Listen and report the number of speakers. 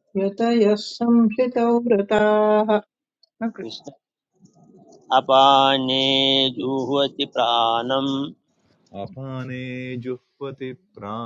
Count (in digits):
3